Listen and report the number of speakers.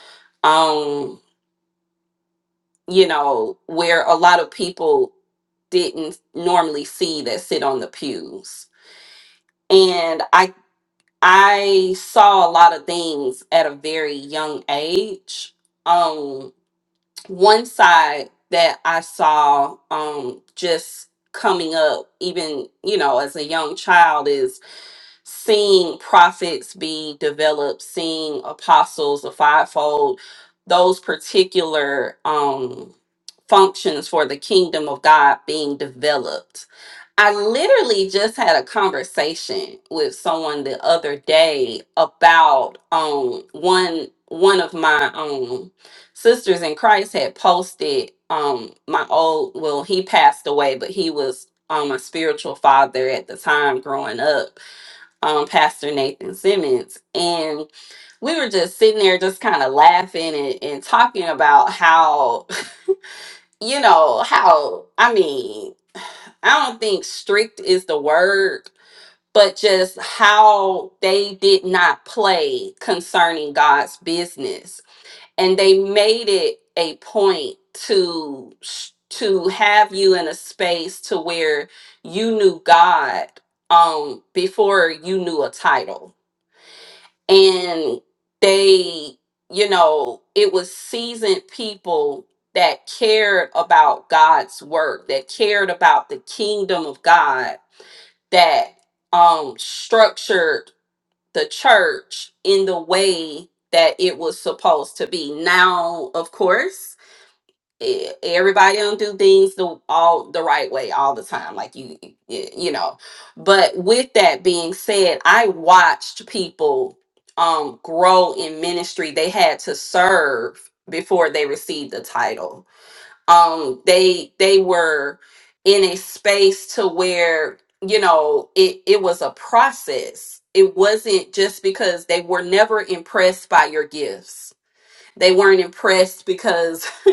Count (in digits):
1